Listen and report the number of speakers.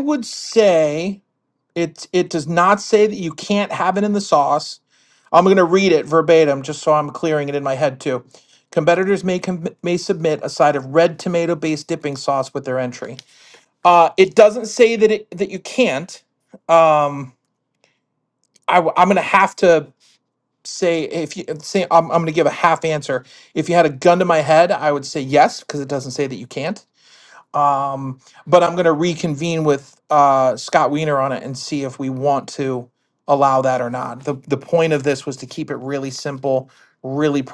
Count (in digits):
1